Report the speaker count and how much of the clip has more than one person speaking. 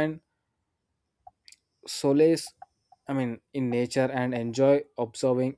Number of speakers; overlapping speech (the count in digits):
1, no overlap